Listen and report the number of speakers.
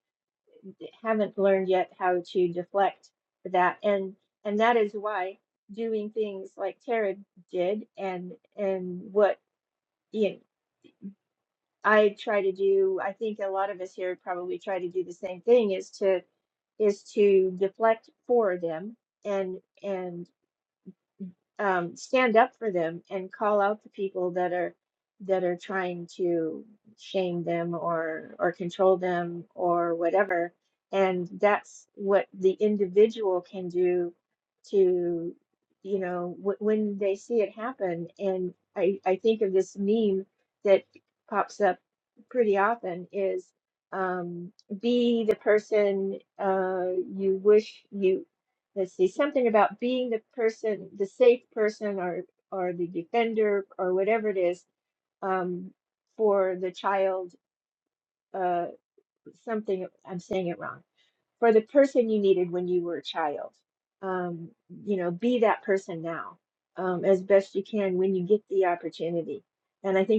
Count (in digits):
1